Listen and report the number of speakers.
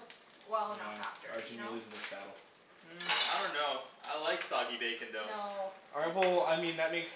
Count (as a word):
three